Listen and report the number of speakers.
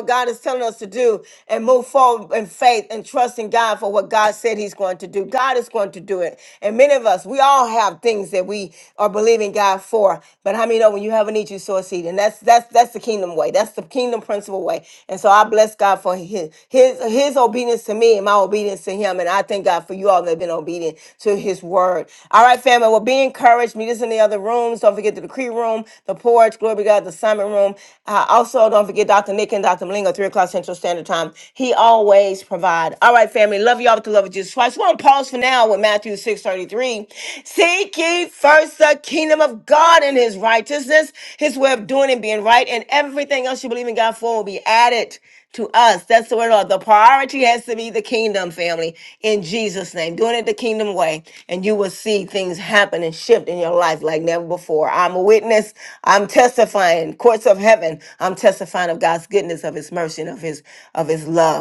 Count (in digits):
1